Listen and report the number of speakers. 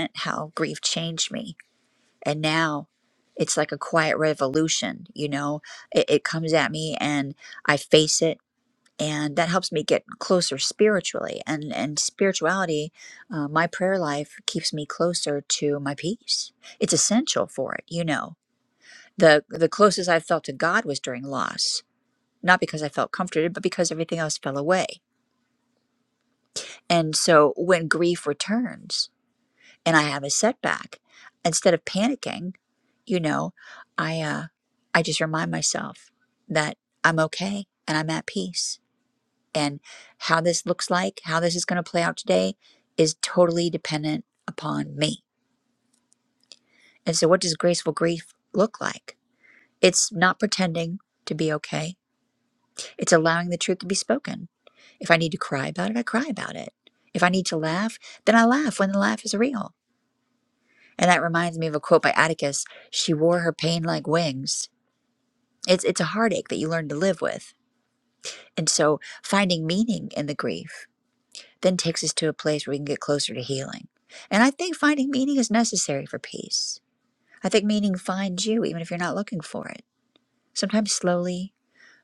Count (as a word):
one